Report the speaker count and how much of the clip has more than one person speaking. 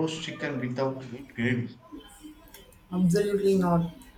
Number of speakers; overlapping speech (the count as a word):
two, no overlap